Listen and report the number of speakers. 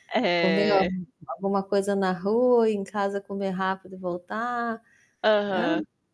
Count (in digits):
2